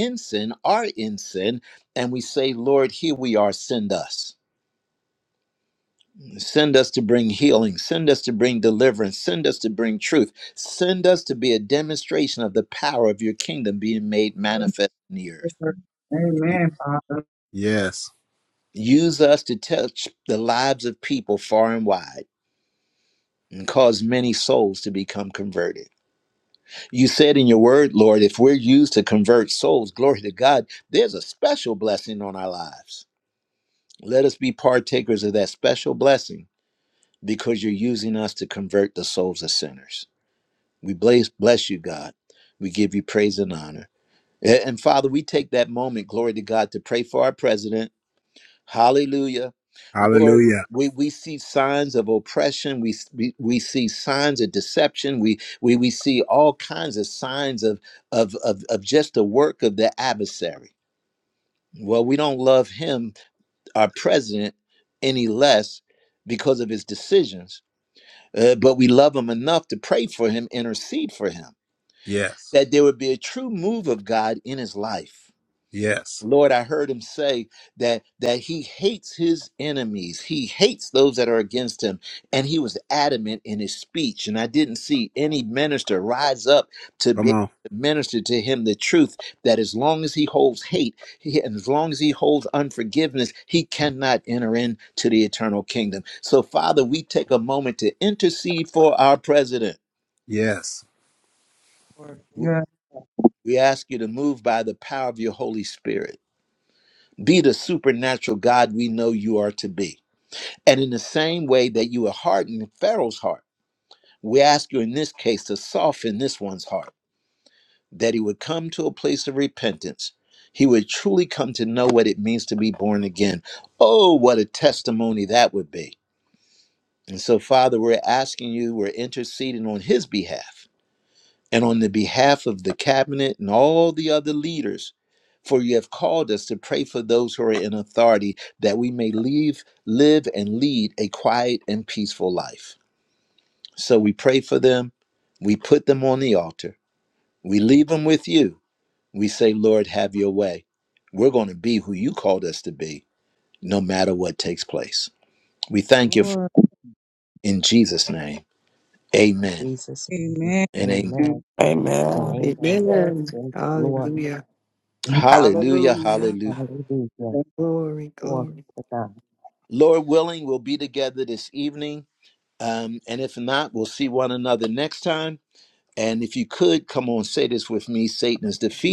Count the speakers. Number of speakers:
six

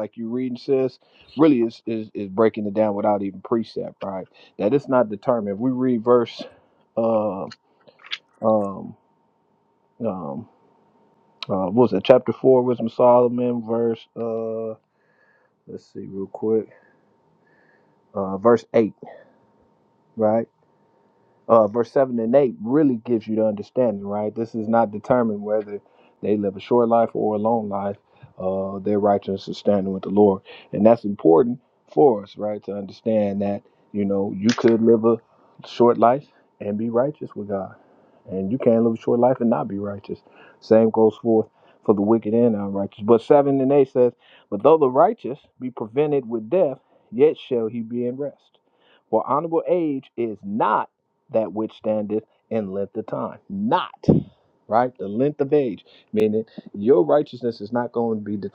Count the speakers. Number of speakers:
one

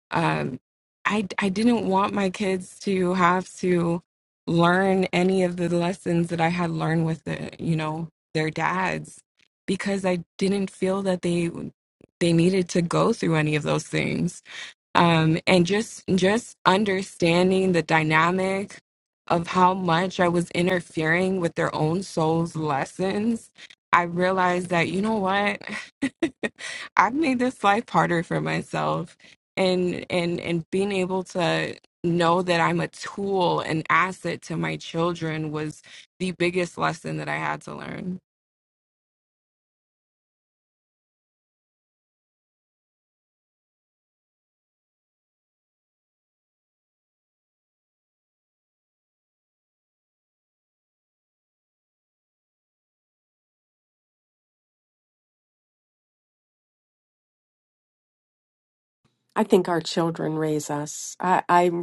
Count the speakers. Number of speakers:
two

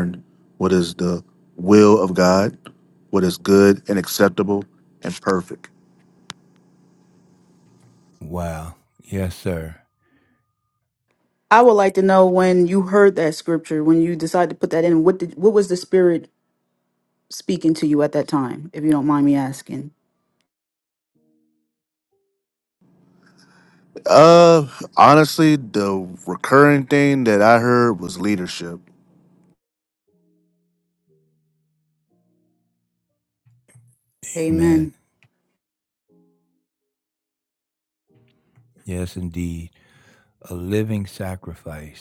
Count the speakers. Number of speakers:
three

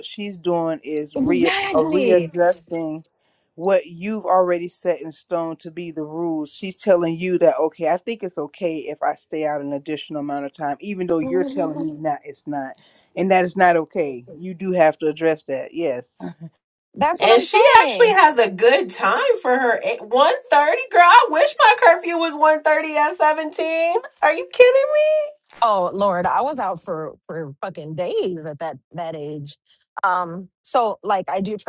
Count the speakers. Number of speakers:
three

